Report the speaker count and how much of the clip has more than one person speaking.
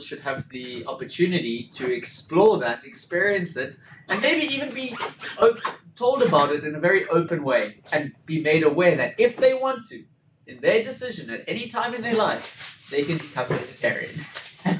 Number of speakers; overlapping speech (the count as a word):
one, no overlap